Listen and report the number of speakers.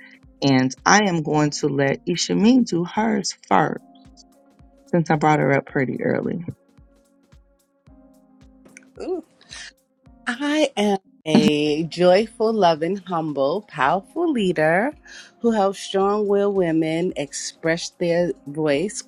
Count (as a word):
two